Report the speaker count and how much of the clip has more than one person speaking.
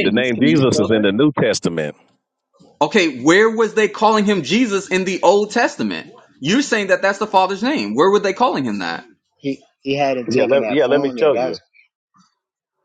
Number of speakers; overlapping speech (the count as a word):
three, about 19%